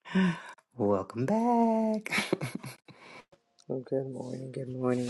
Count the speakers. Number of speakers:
two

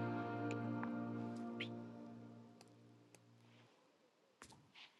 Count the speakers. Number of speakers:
zero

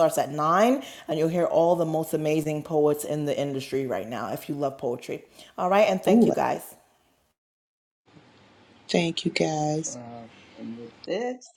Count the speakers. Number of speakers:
three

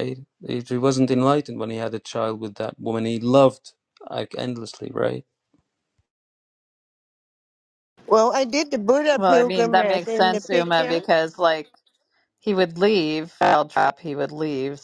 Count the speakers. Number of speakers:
three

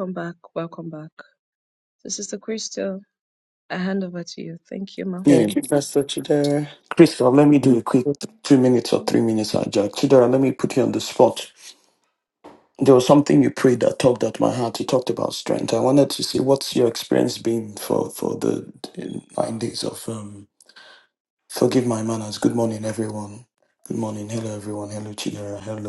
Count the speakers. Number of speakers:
three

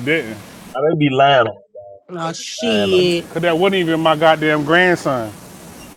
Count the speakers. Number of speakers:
three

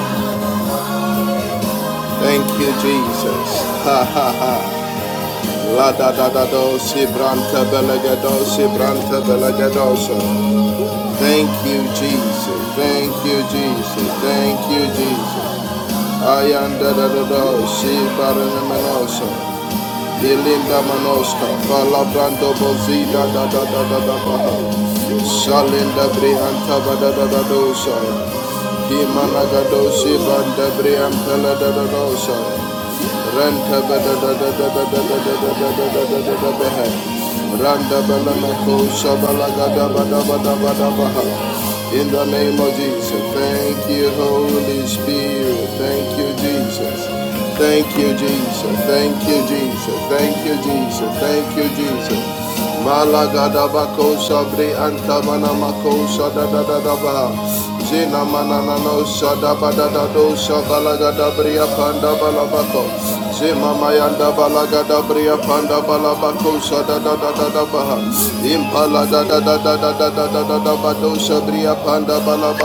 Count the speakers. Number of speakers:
one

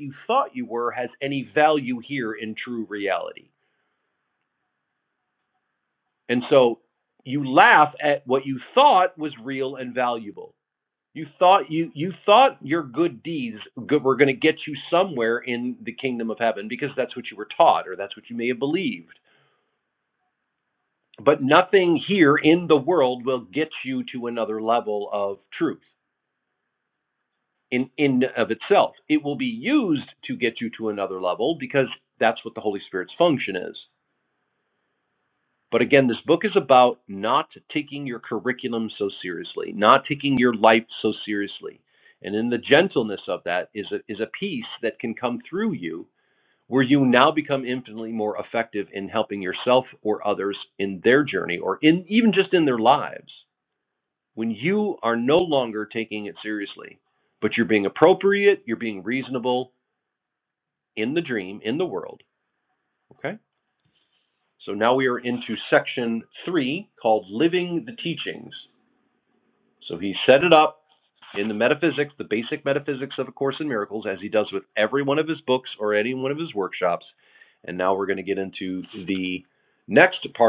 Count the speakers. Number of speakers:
one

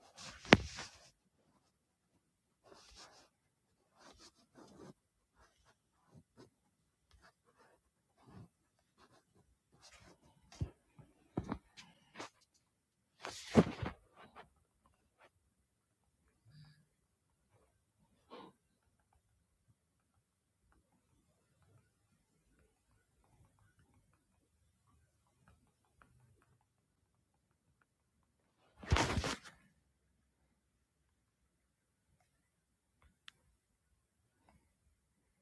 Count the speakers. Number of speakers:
zero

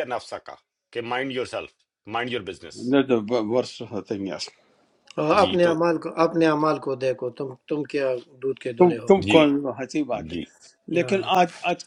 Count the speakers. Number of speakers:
three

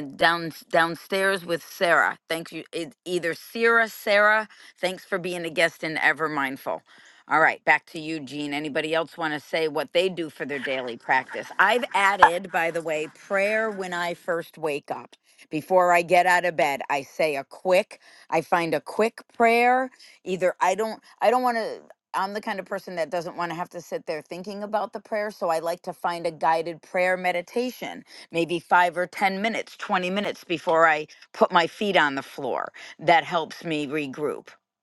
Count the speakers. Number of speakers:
one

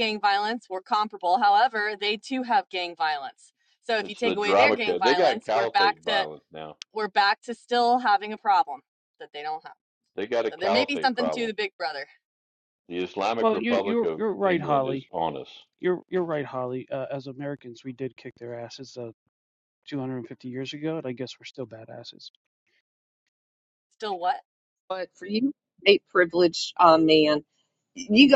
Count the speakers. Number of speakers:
four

